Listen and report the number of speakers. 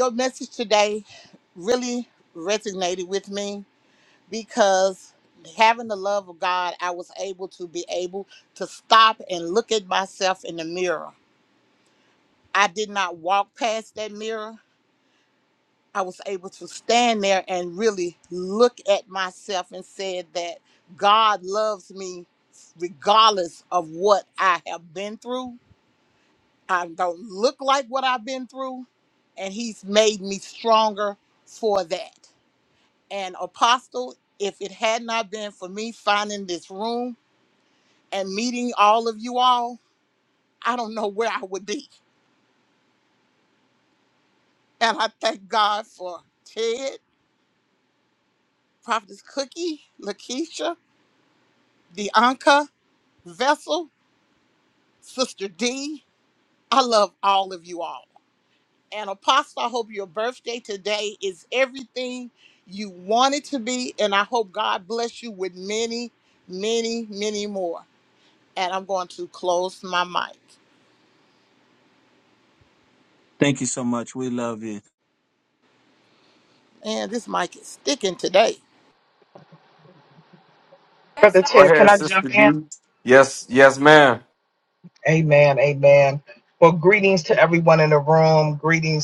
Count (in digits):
4